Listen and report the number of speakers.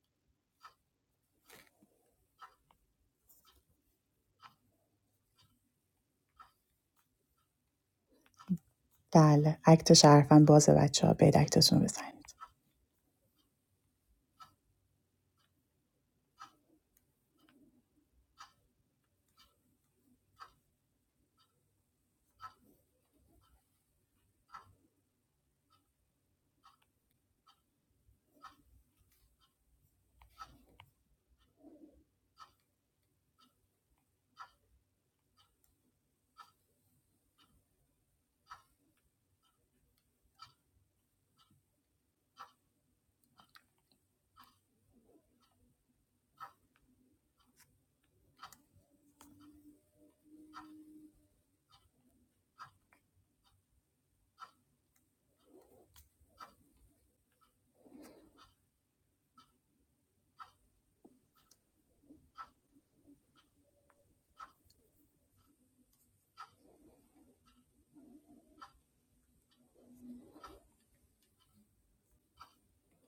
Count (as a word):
one